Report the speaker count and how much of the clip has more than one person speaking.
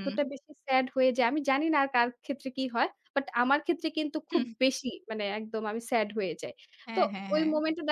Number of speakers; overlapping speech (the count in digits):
2, about 12%